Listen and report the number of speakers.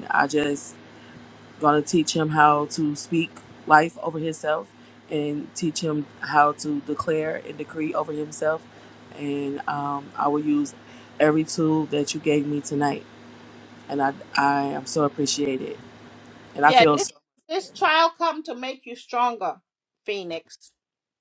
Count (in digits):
2